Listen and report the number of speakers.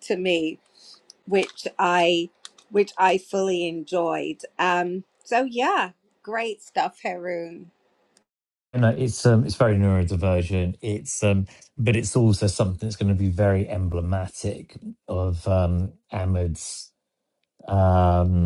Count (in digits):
2